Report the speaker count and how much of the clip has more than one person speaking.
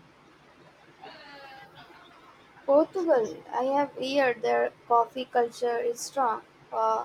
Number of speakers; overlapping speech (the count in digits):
1, no overlap